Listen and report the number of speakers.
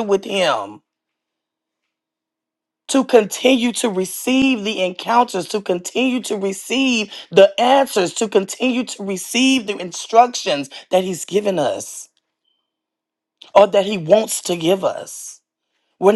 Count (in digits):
1